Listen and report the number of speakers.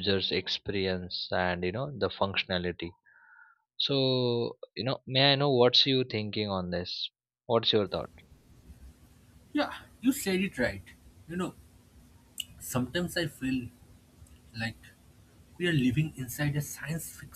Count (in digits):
2